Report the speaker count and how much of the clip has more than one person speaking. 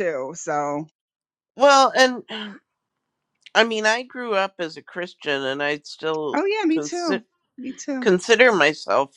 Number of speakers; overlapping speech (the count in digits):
2, about 6%